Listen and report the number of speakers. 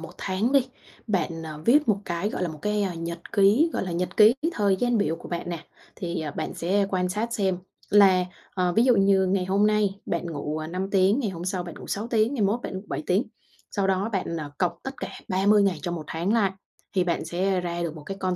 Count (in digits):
1